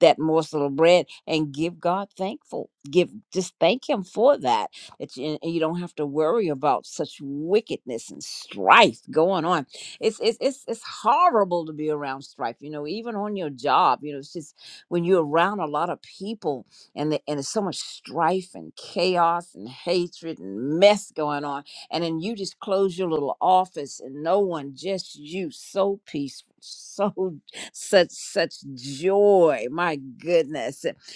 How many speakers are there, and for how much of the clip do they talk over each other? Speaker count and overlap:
1, no overlap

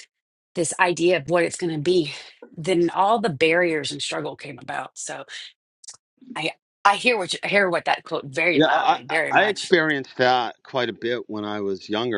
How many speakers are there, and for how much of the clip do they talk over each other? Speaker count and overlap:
2, about 10%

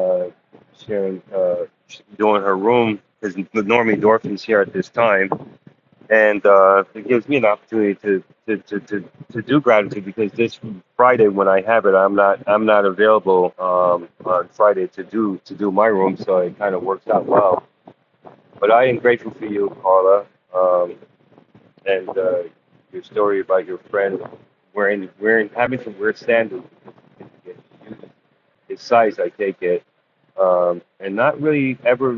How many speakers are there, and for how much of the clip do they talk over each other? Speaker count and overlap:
1, no overlap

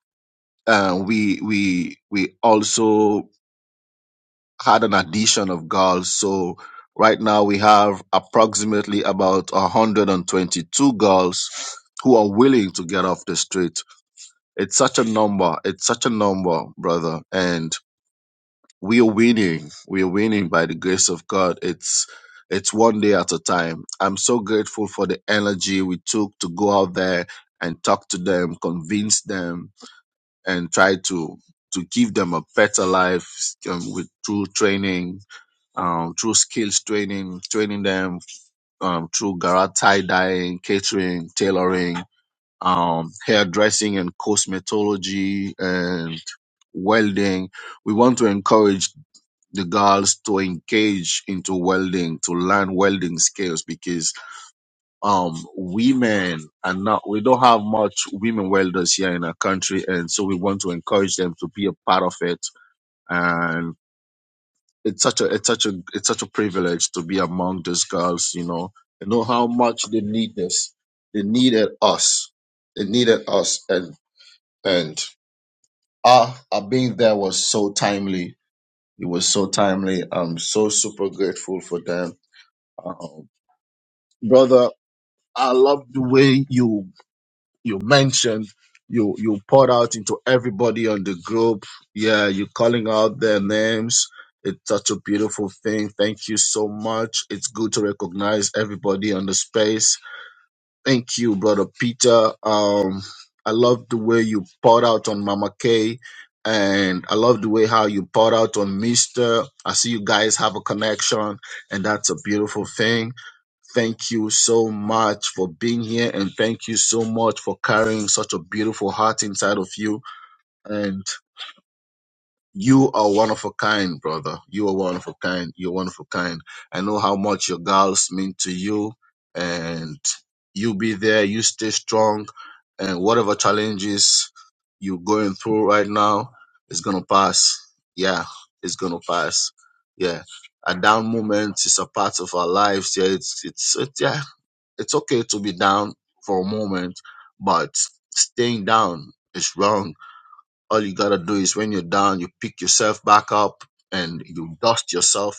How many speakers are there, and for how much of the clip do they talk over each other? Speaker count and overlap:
1, no overlap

